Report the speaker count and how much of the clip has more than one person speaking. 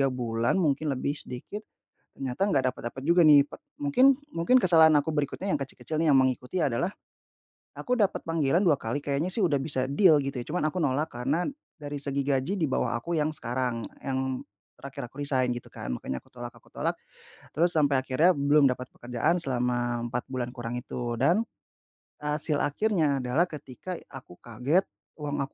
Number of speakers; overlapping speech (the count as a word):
one, no overlap